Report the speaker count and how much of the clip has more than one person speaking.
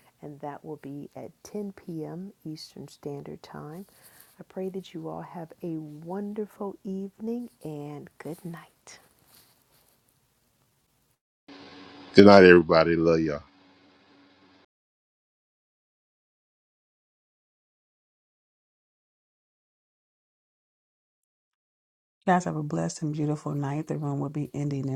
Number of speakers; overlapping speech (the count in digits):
3, no overlap